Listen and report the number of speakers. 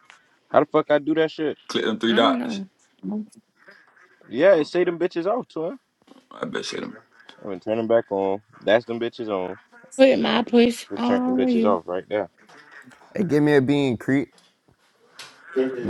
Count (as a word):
four